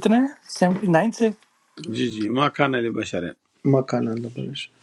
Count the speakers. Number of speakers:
three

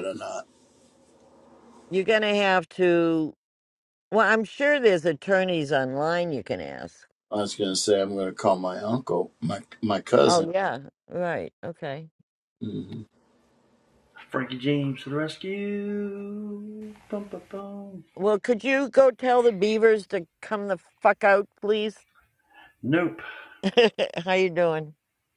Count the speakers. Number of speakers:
three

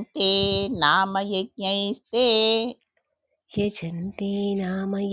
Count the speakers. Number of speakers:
two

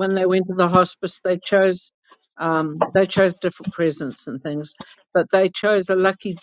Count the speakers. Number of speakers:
one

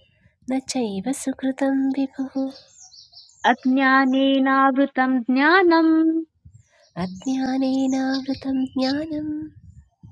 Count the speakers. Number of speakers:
two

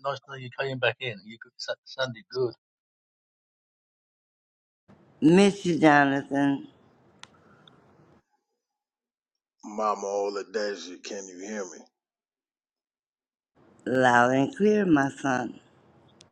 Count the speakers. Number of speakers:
three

